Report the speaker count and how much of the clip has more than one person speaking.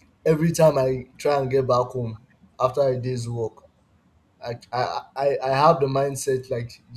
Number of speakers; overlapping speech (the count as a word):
one, no overlap